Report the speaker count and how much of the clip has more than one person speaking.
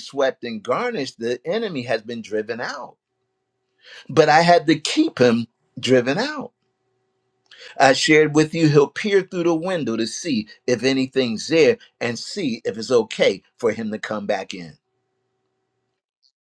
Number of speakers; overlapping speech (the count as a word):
one, no overlap